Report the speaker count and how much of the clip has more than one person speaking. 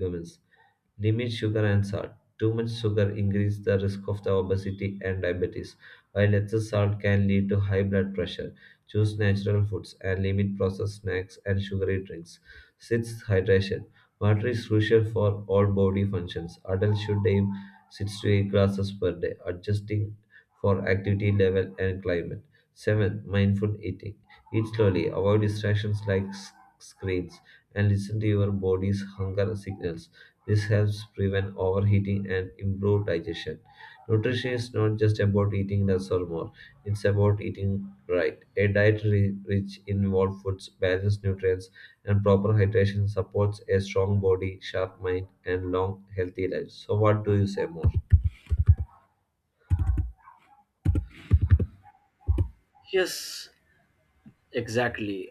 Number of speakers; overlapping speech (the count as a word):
two, no overlap